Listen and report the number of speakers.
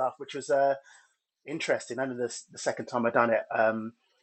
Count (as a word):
one